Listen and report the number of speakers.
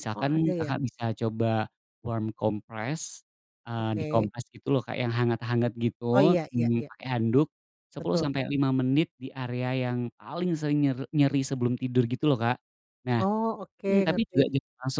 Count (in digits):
2